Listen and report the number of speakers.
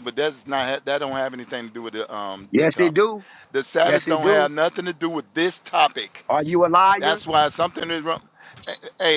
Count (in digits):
2